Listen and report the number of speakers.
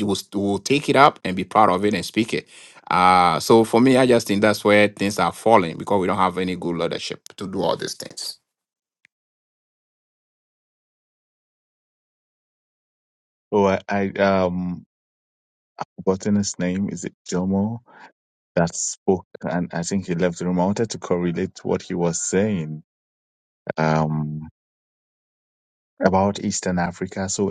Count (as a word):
two